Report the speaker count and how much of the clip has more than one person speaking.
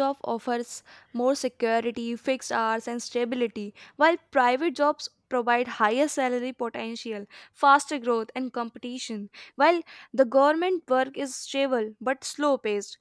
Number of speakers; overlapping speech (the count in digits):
1, no overlap